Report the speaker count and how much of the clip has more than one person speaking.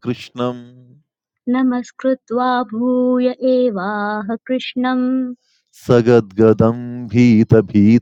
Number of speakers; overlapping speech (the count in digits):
2, no overlap